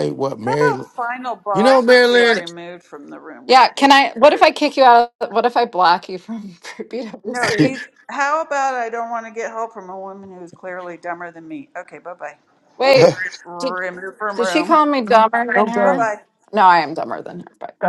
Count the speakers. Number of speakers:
three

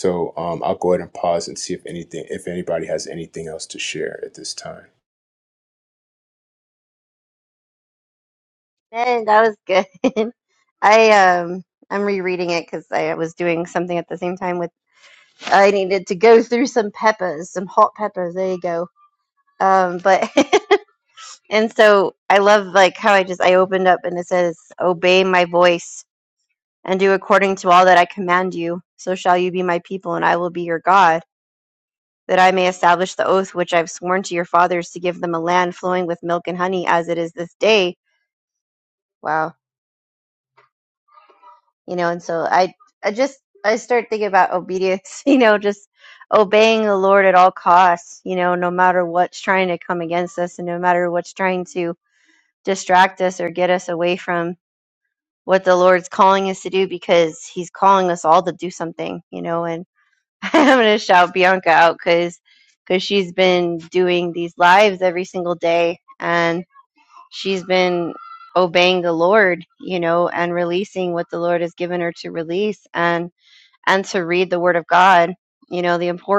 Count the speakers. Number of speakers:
two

